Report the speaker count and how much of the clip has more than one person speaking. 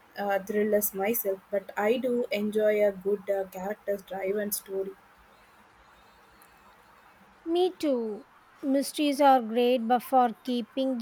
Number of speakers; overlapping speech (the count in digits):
2, no overlap